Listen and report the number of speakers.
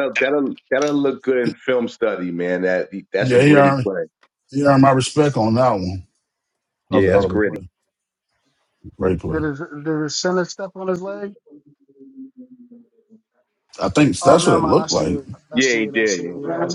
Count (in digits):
3